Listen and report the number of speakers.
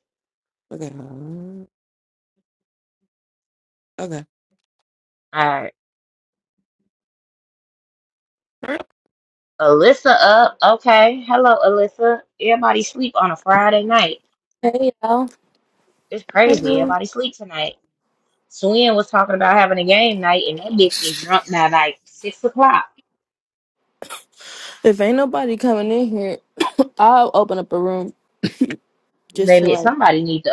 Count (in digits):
3